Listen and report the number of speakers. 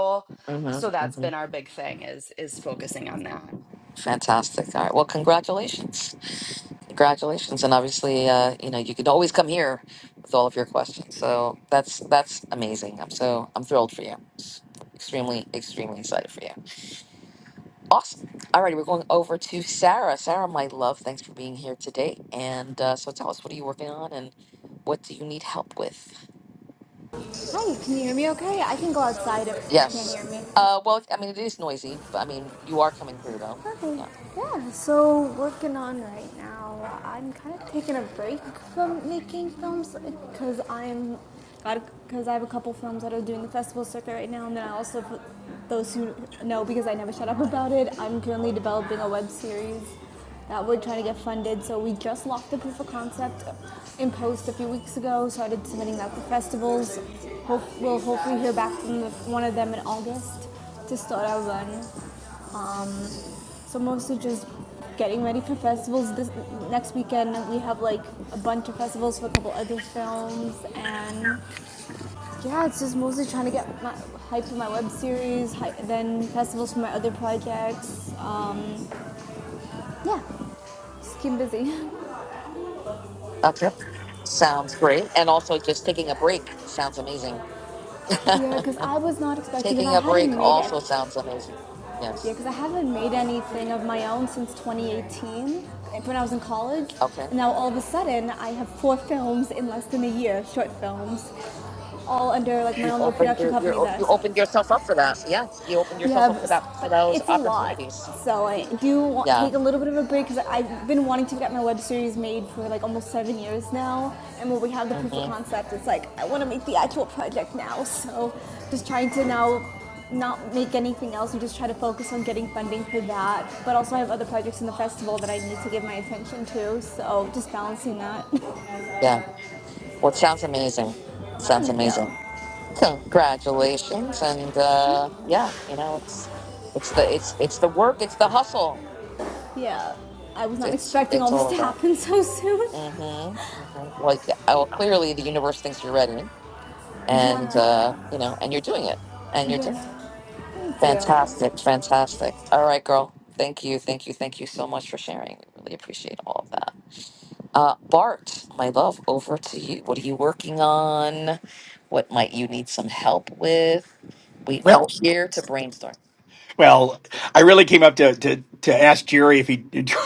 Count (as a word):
four